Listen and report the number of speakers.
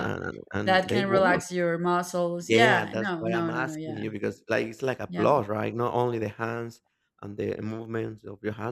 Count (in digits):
2